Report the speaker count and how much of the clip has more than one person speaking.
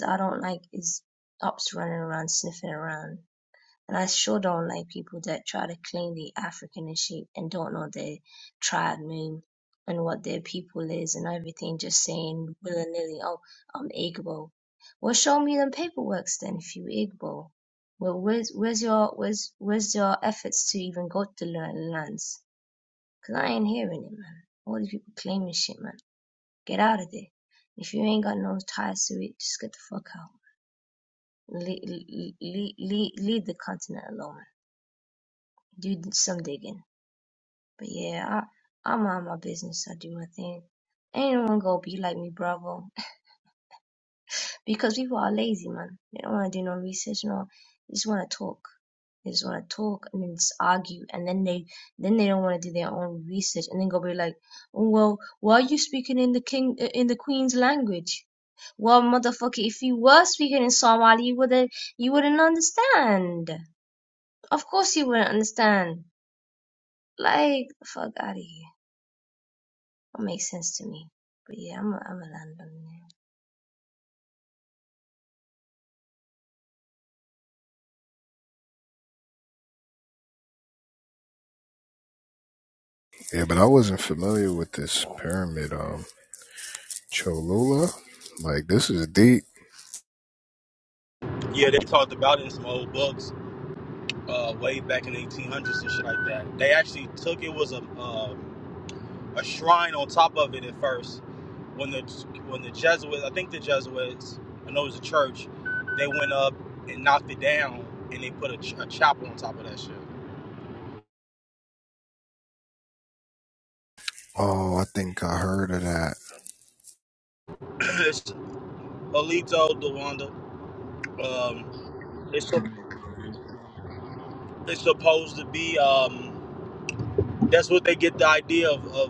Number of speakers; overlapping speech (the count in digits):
3, no overlap